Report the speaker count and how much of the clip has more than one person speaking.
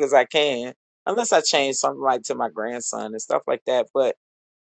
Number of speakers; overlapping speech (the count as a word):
one, no overlap